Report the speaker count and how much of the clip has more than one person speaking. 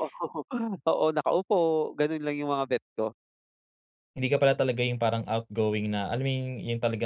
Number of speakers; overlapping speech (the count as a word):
two, no overlap